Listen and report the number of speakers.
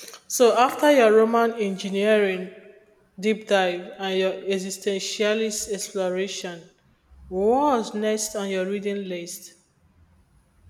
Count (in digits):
1